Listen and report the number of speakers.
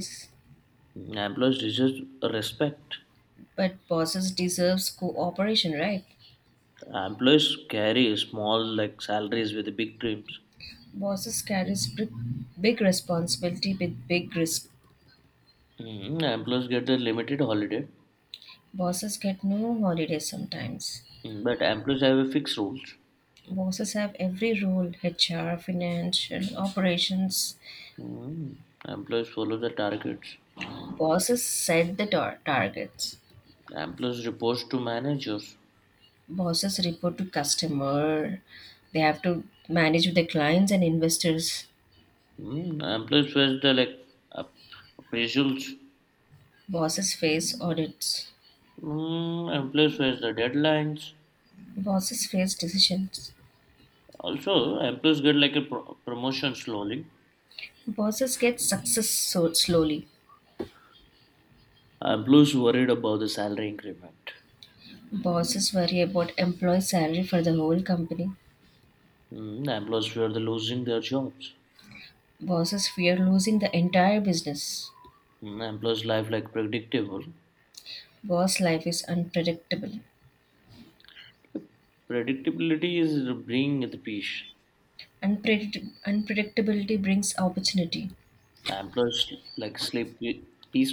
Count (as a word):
two